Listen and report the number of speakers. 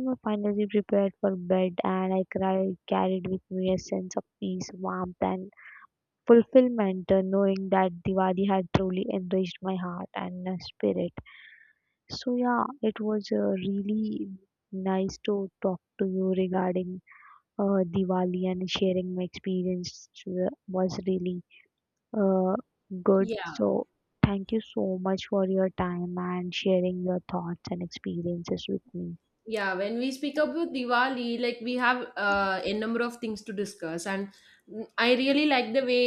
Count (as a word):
two